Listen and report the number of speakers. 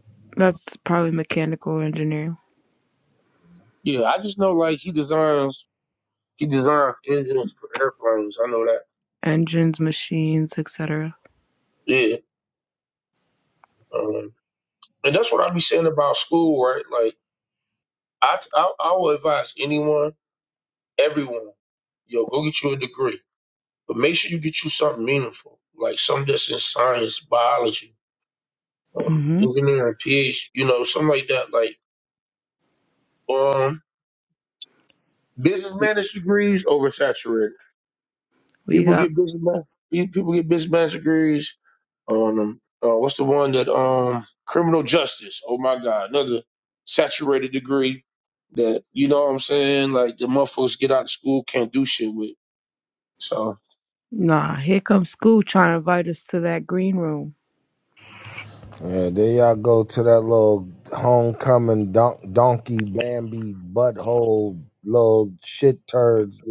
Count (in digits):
3